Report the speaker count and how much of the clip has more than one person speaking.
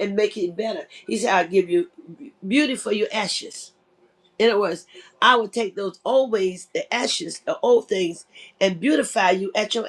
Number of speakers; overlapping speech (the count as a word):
one, no overlap